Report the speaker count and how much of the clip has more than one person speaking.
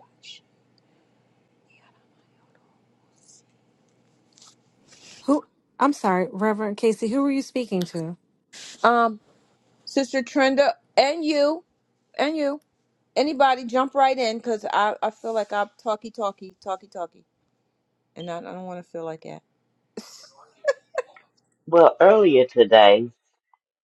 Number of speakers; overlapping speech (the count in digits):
3, no overlap